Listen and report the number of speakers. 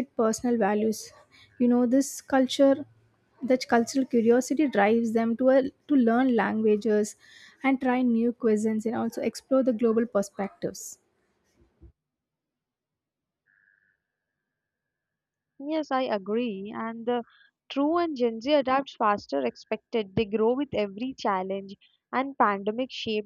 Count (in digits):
2